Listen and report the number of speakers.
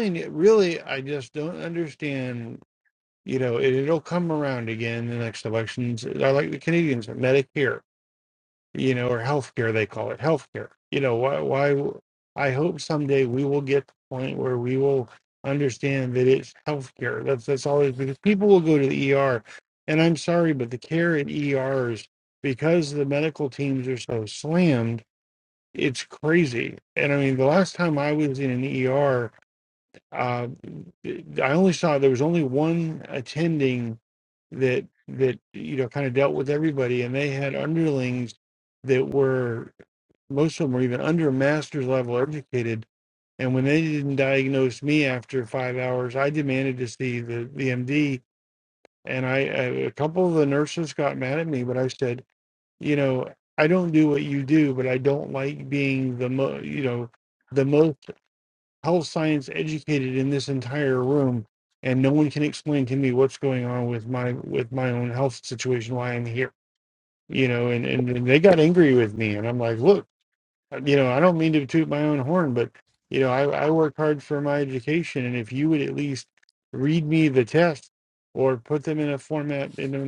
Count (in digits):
1